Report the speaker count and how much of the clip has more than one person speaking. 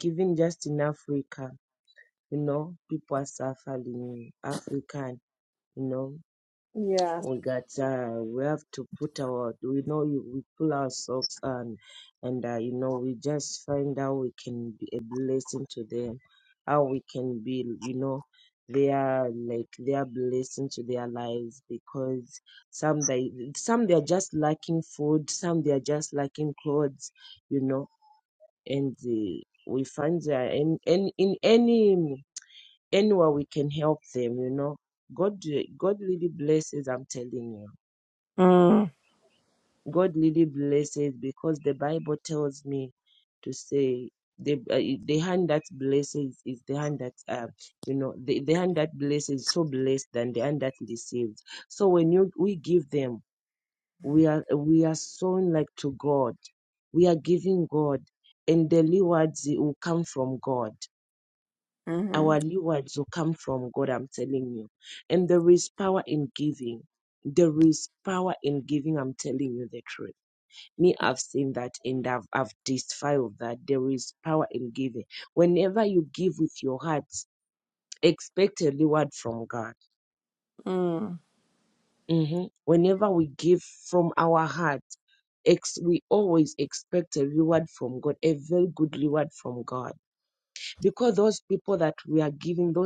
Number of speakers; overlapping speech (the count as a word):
two, no overlap